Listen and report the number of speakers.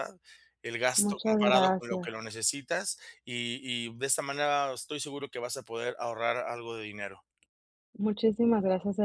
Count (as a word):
two